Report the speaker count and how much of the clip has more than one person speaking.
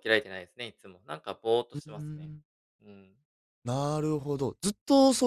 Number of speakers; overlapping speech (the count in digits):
2, about 5%